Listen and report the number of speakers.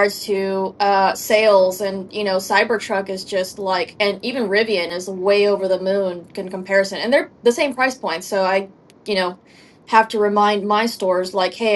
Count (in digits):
1